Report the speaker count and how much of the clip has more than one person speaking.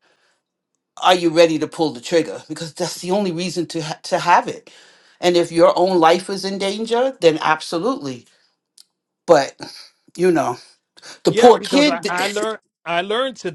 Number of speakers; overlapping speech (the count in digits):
2, about 7%